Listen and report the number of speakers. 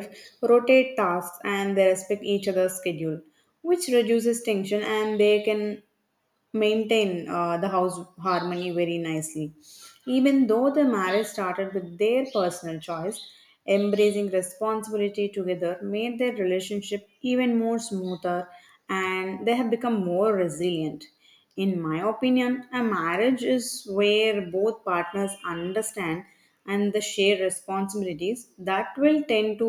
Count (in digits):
1